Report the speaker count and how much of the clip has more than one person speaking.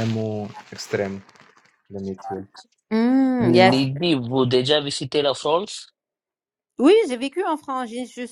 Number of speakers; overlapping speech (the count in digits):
3, about 5%